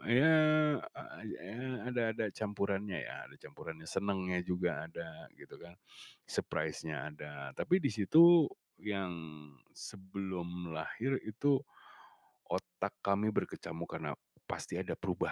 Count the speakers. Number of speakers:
1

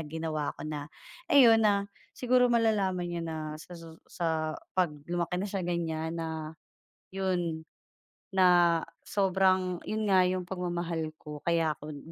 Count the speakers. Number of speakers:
1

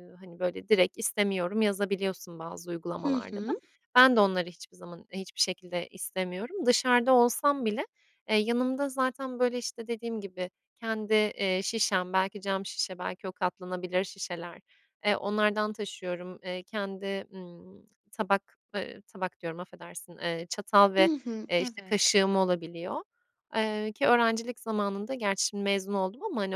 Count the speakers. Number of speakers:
2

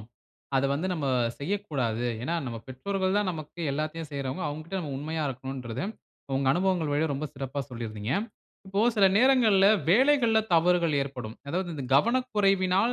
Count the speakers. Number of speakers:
1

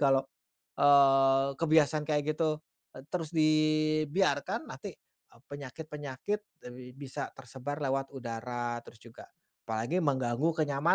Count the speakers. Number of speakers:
1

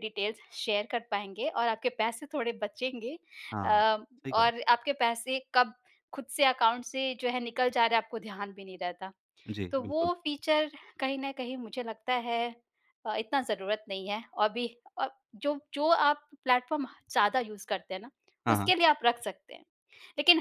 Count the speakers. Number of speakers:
2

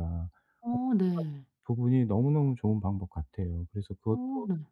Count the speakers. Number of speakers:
2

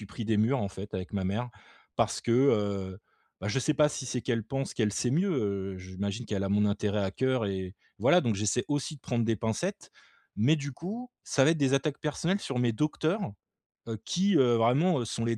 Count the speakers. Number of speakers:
1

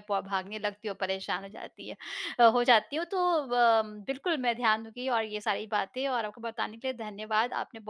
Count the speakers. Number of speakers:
1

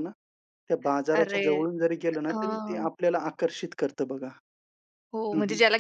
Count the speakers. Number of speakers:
2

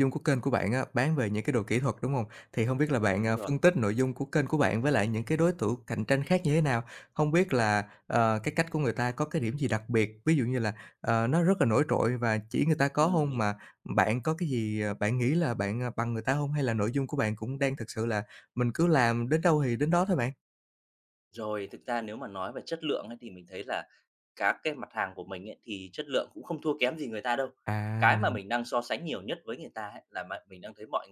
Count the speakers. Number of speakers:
2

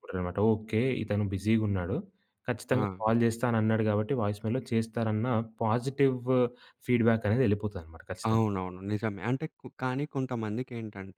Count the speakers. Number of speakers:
2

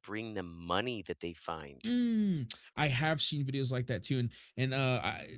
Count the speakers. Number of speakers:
2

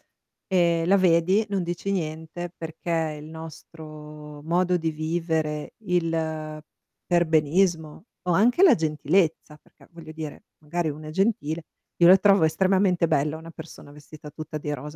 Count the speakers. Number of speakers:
1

